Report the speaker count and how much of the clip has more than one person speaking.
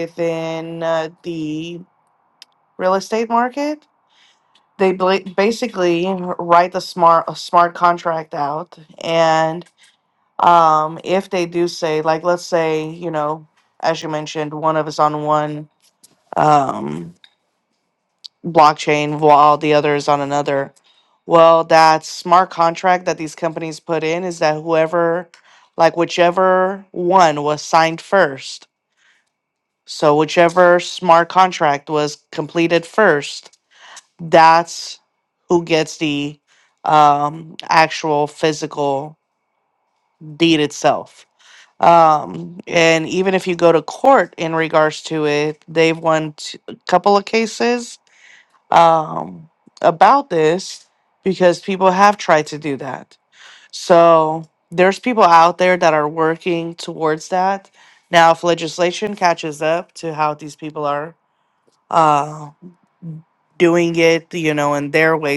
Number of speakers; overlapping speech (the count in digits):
1, no overlap